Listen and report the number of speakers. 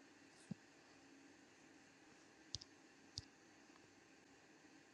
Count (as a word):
zero